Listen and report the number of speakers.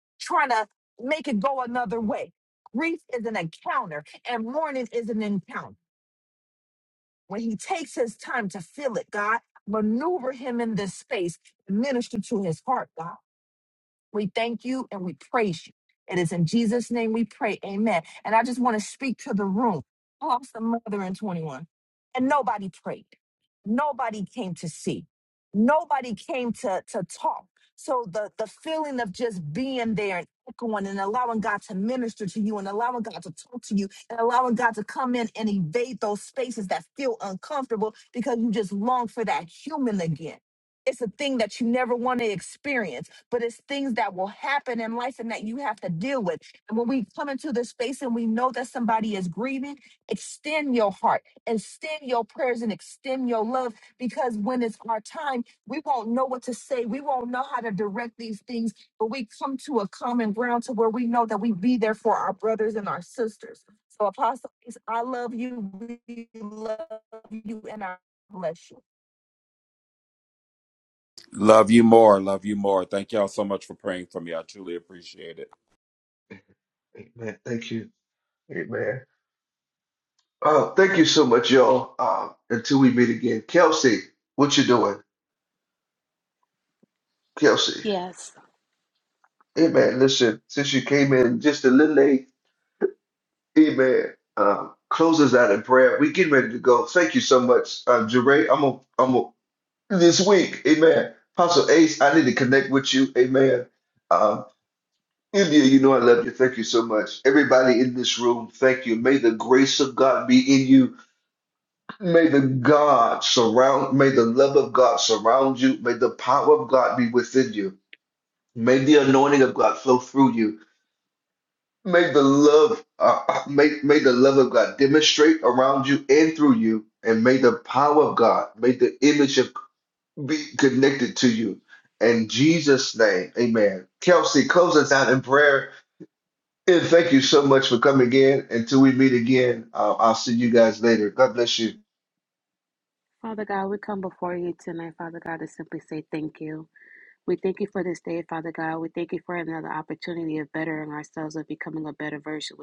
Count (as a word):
four